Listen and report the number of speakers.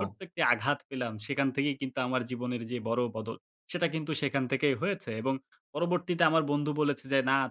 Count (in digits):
1